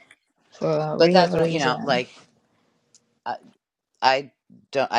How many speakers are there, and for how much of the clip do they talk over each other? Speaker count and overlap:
2, about 20%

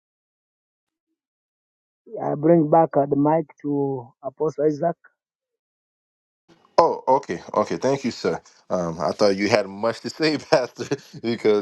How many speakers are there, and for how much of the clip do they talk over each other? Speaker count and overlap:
2, no overlap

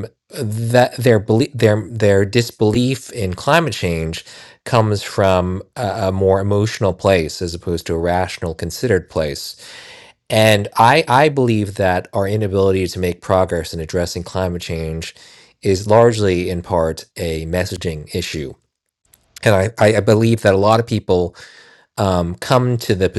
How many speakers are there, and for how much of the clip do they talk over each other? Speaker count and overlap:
1, no overlap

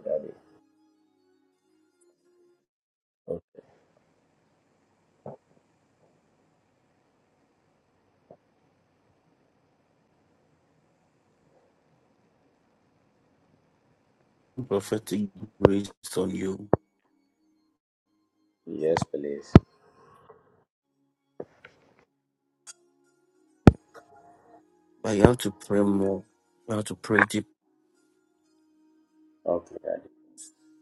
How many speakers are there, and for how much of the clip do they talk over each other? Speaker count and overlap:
2, no overlap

